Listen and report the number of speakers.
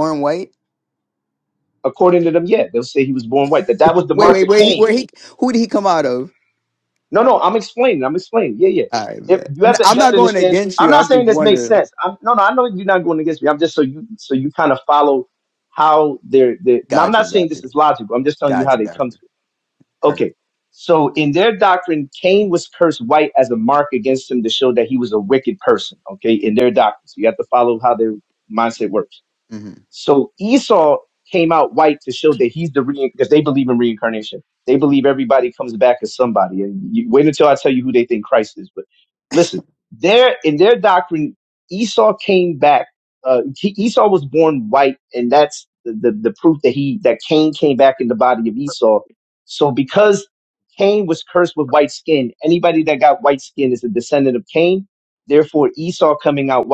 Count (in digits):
2